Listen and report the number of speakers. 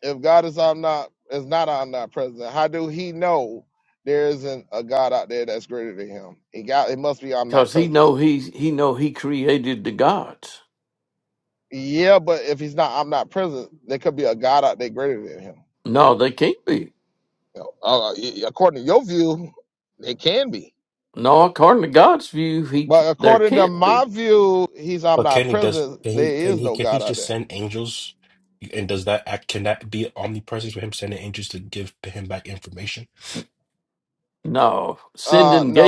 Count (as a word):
three